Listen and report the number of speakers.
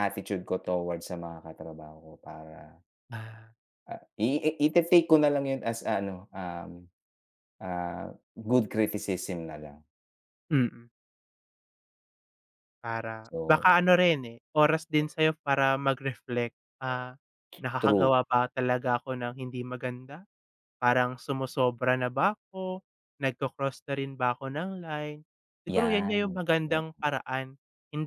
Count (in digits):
2